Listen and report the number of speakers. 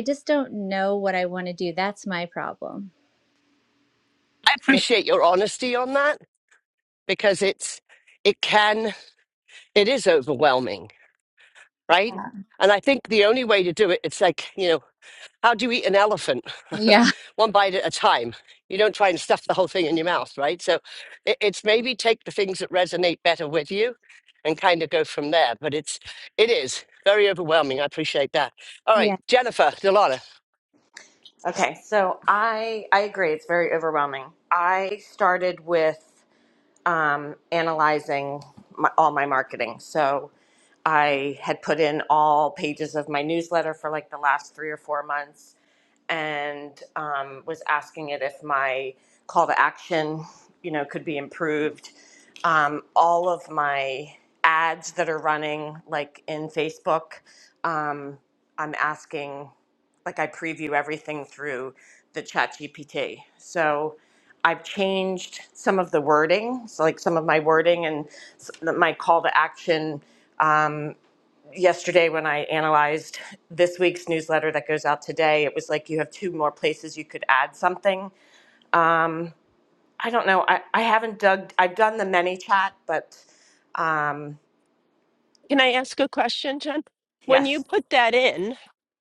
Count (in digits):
4